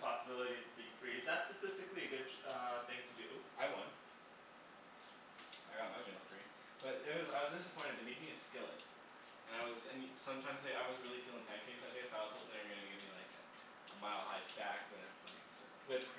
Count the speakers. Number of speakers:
2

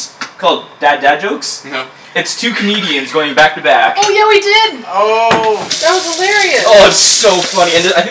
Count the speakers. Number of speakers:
3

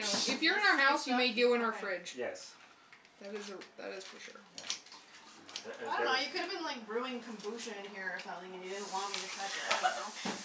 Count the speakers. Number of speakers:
3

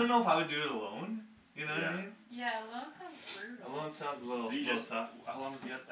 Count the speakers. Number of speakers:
3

